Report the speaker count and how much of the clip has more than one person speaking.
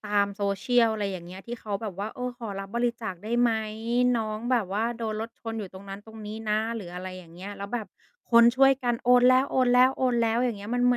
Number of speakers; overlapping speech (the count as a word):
one, no overlap